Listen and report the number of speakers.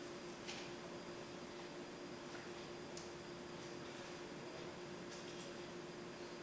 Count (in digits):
0